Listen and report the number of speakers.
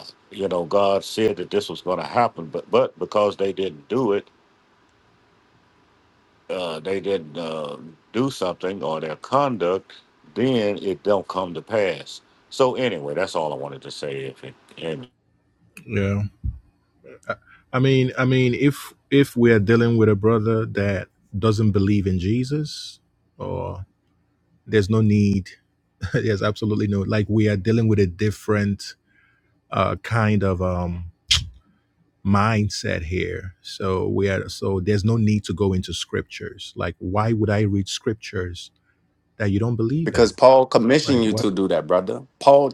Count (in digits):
3